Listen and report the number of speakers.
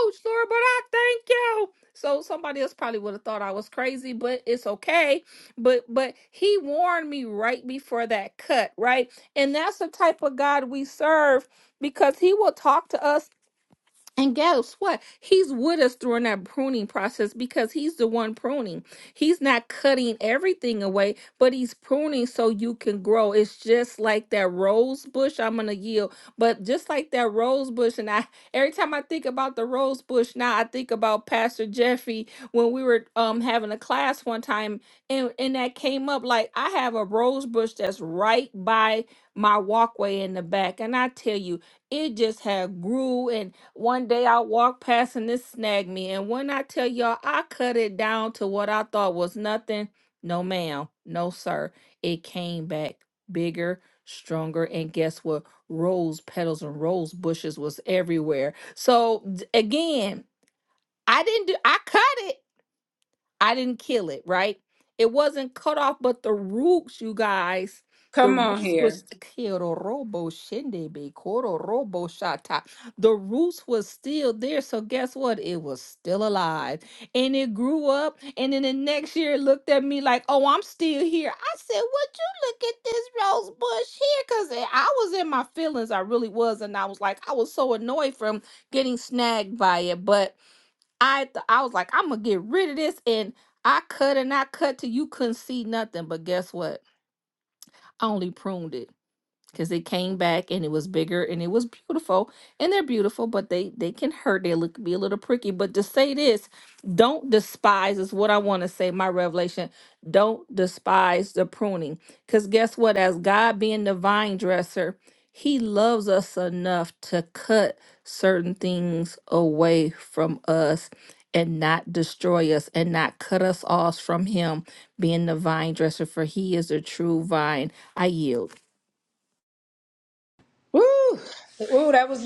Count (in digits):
2